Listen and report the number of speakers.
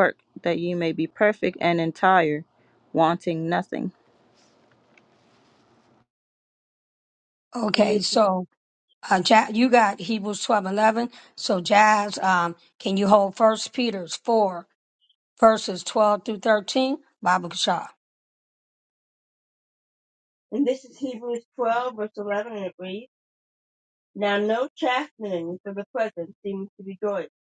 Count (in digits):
3